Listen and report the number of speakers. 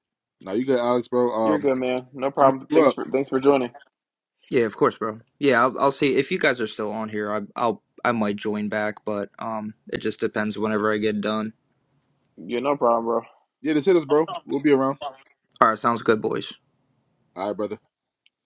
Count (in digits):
3